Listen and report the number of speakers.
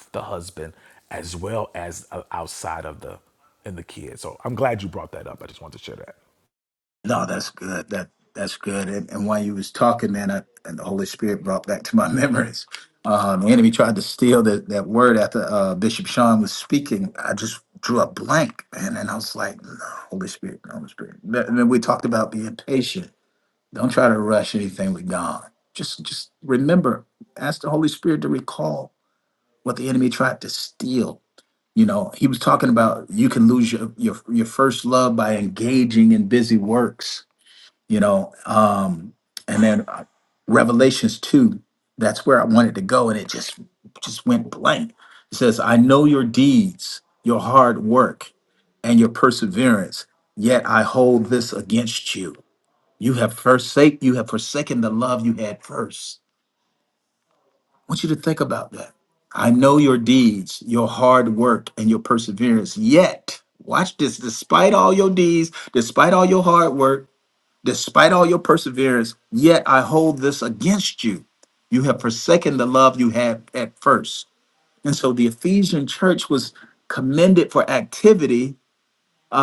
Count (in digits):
2